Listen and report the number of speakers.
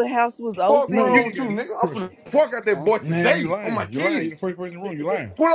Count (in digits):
3